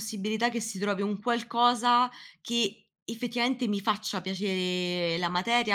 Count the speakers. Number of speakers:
1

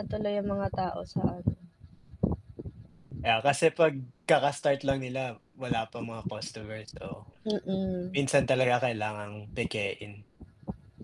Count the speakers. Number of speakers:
2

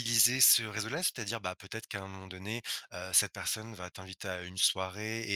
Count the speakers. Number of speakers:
1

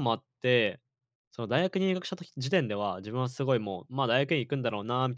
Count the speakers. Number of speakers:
1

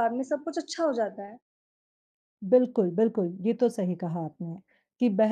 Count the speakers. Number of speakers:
2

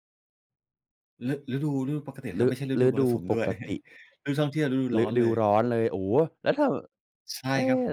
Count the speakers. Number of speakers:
2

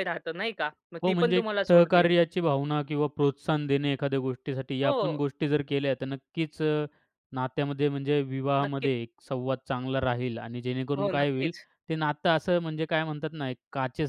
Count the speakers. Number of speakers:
2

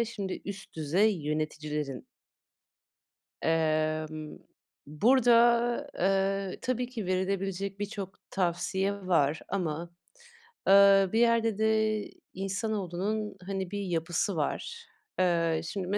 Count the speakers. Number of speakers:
1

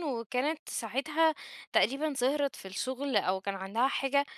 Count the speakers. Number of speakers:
1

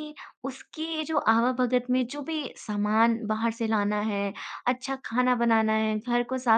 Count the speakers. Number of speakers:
1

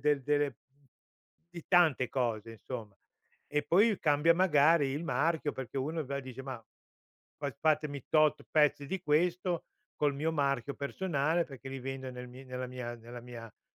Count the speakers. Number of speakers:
1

